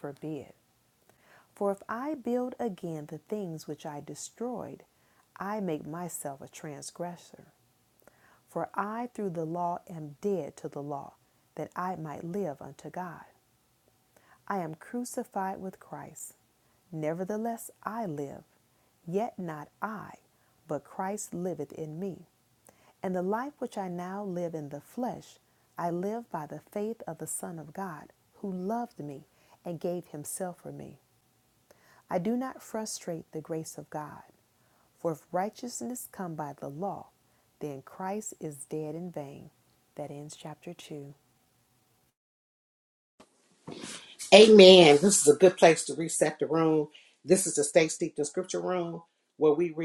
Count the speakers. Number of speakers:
two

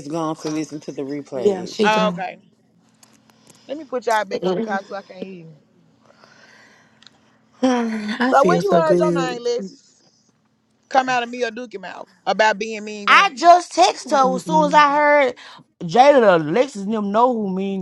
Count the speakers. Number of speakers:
four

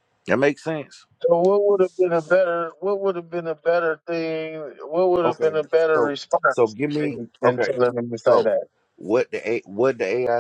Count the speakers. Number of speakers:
two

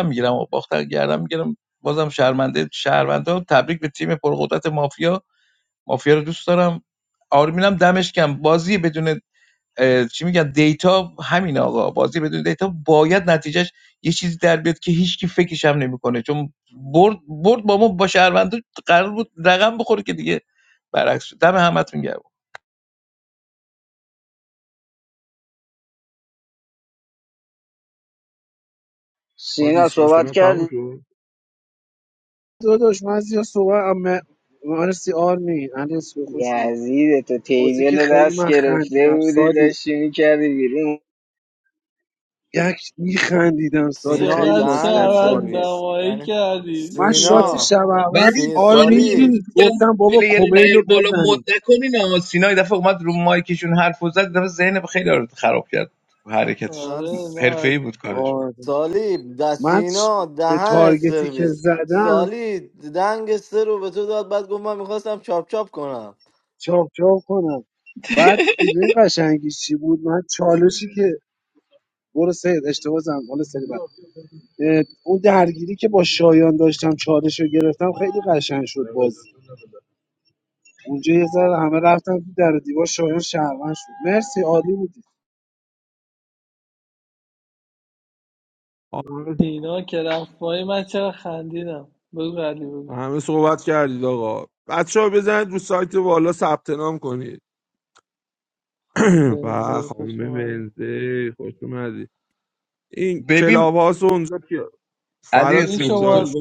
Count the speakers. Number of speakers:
six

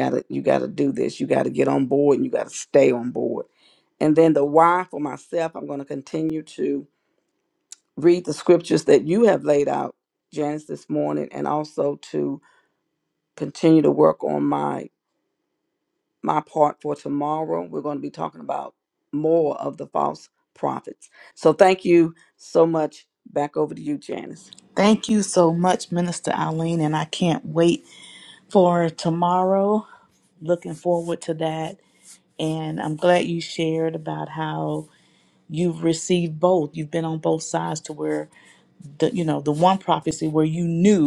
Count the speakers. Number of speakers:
two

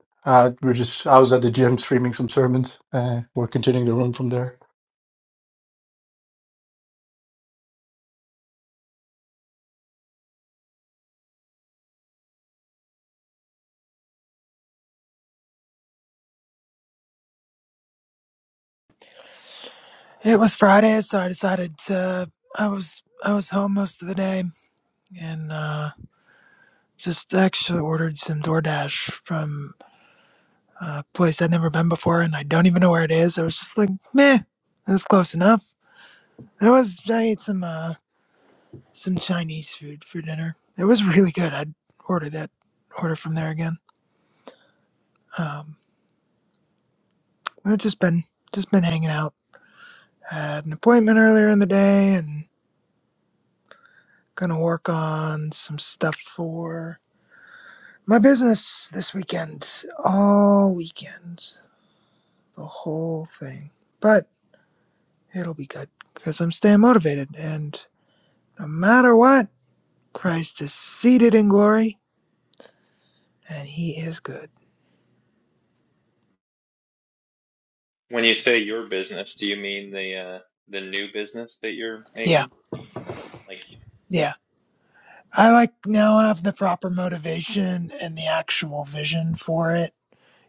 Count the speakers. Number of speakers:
three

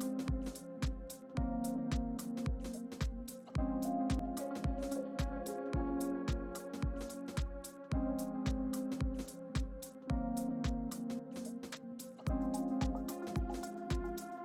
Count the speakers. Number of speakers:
zero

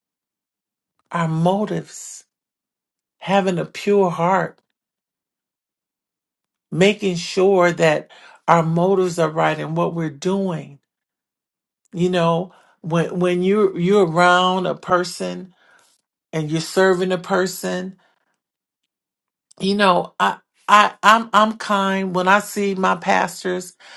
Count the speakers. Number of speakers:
one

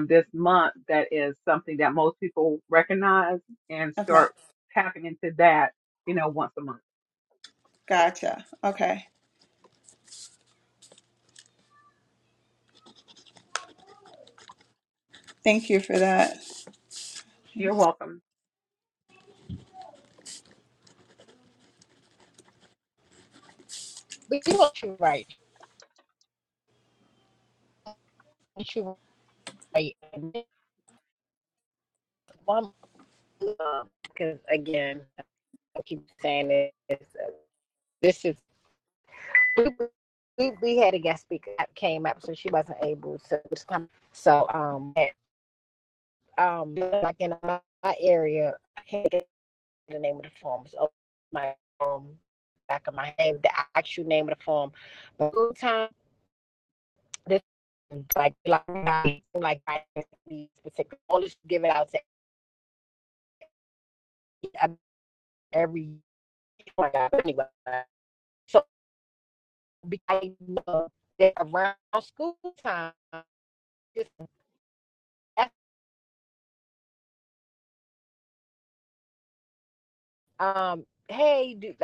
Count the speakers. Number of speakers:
three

